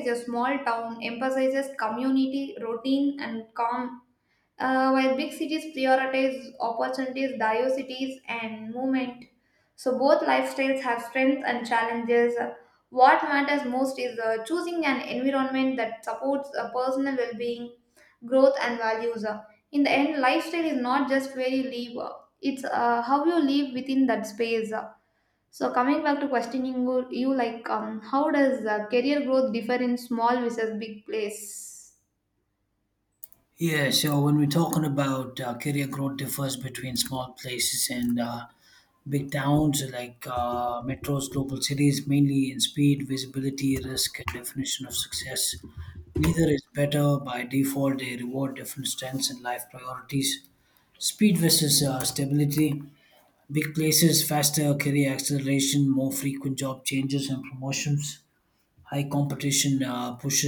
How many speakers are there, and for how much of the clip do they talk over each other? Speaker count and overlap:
two, no overlap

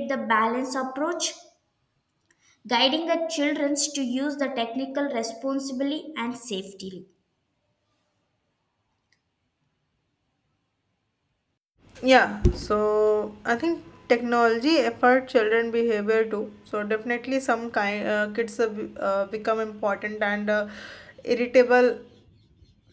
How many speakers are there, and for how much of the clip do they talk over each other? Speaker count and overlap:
two, no overlap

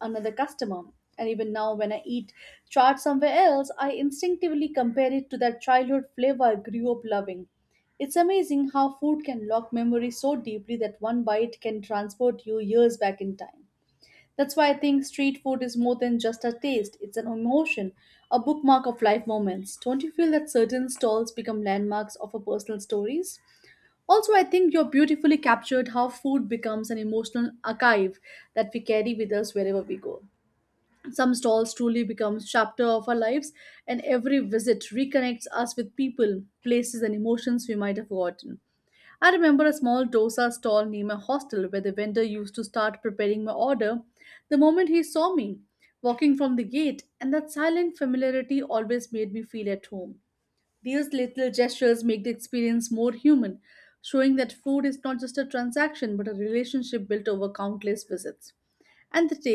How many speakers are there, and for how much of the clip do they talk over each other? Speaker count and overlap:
one, no overlap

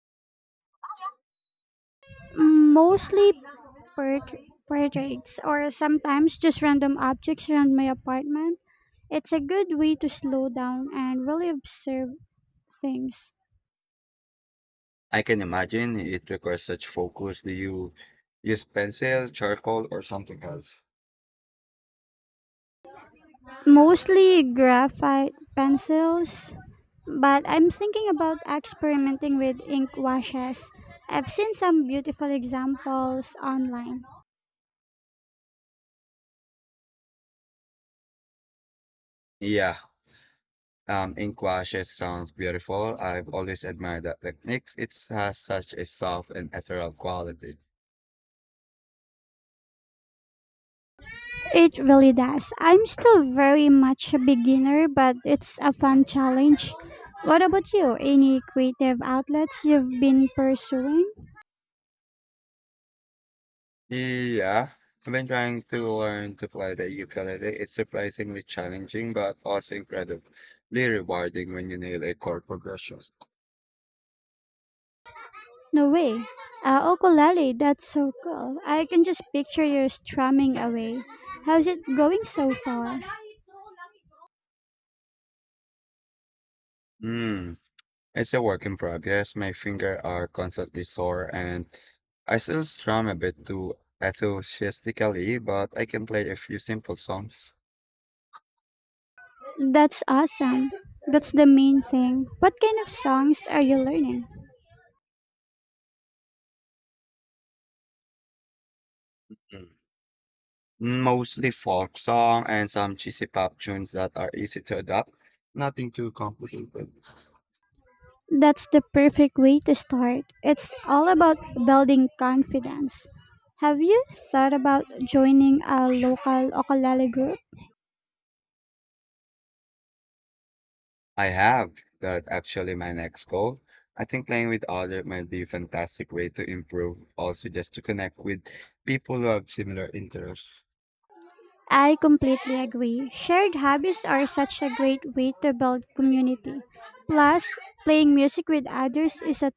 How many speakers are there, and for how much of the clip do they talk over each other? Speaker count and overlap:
two, no overlap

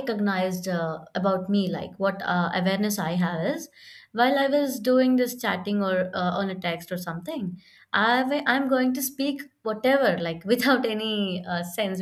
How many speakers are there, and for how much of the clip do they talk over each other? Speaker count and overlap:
one, no overlap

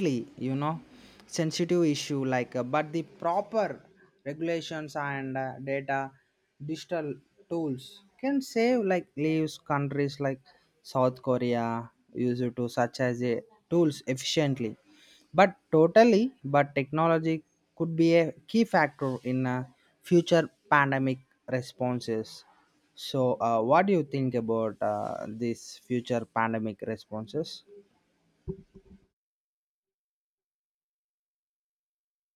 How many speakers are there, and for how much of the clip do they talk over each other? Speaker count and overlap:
one, no overlap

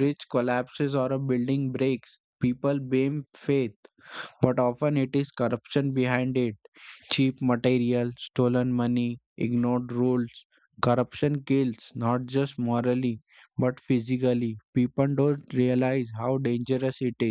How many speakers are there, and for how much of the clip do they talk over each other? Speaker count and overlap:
one, no overlap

